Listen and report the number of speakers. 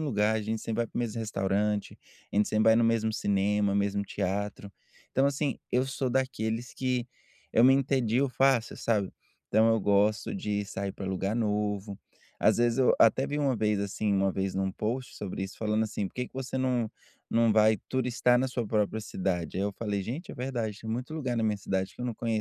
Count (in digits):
1